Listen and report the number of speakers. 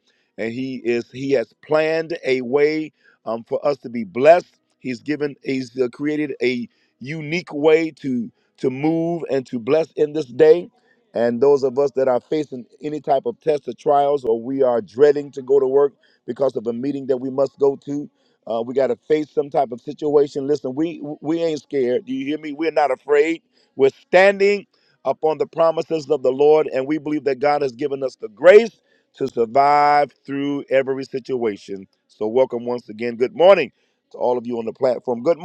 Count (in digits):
1